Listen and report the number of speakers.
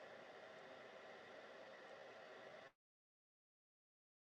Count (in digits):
0